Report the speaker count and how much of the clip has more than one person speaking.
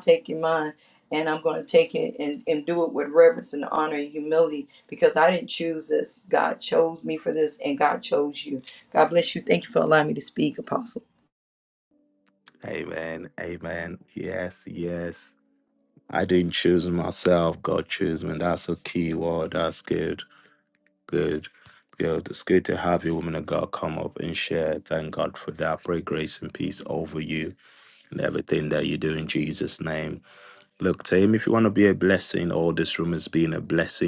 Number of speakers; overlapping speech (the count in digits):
2, no overlap